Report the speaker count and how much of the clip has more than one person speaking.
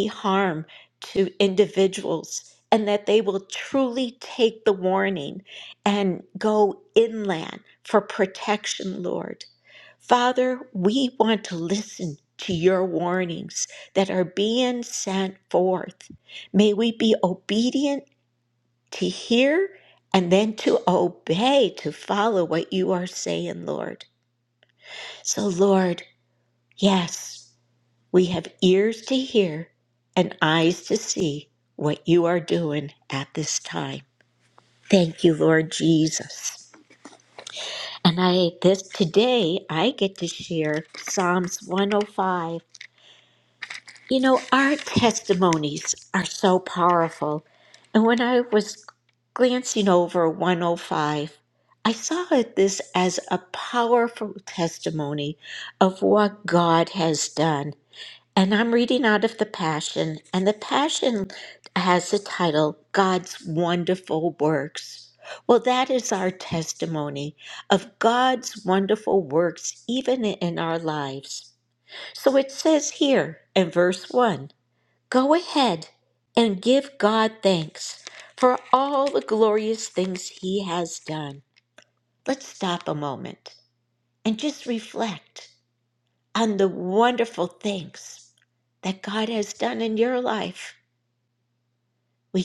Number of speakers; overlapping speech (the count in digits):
1, no overlap